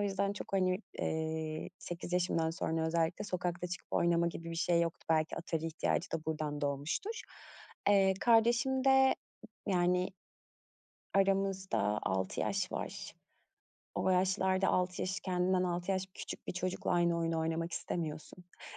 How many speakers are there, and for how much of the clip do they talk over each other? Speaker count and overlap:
1, no overlap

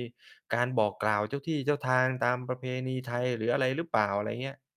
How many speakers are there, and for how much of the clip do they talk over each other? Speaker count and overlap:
1, no overlap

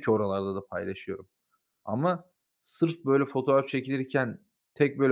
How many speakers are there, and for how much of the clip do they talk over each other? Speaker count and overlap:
1, no overlap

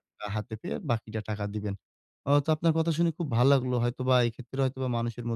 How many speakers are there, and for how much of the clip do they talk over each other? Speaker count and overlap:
1, no overlap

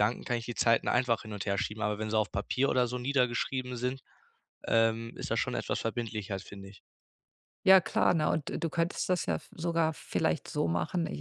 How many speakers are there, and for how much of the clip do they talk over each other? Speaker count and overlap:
2, no overlap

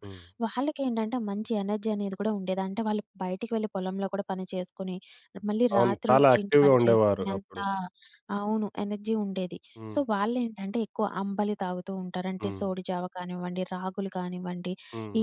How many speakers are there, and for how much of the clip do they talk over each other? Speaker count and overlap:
2, about 15%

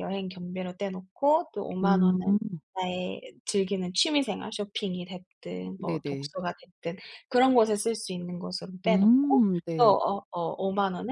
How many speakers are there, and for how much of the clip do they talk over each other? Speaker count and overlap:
2, about 16%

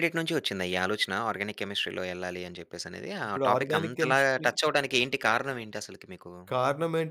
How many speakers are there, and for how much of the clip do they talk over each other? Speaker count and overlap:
2, about 17%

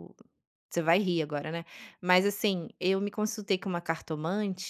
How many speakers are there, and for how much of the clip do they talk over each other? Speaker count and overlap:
1, no overlap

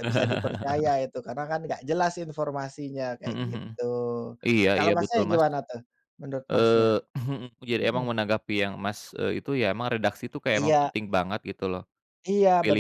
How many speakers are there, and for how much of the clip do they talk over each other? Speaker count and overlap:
2, about 19%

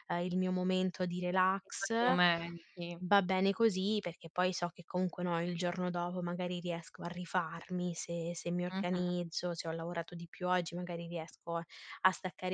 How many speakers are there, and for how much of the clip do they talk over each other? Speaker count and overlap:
2, about 5%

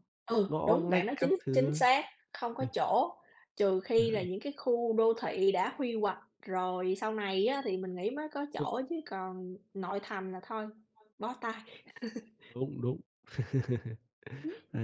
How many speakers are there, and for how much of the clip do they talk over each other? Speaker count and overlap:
2, about 9%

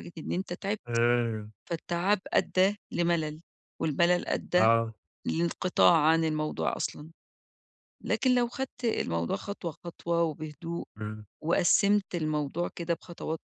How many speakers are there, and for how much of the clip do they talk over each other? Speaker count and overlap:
2, about 1%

